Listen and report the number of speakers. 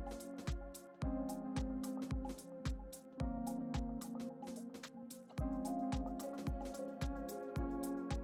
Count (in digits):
0